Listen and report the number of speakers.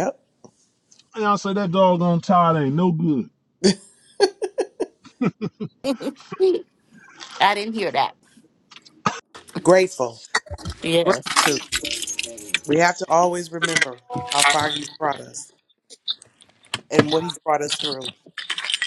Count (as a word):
three